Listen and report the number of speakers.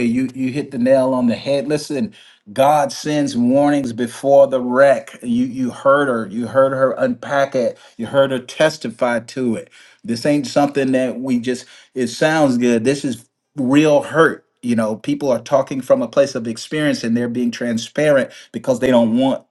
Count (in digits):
1